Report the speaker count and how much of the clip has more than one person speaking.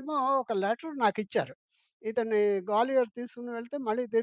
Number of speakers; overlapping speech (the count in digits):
1, no overlap